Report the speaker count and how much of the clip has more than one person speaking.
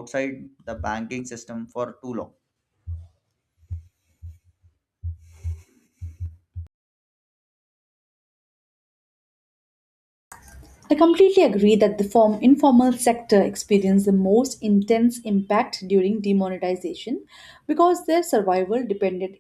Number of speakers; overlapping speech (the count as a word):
two, no overlap